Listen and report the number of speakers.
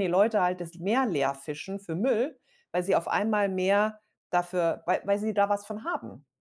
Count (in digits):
1